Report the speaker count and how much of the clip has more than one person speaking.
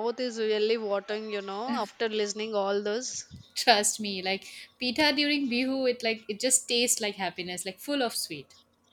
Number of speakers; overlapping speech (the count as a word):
two, no overlap